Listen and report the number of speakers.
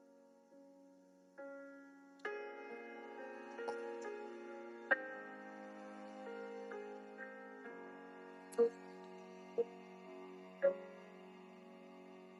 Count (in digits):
0